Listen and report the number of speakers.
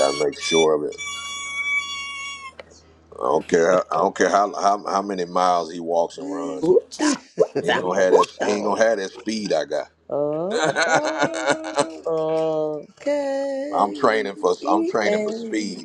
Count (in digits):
3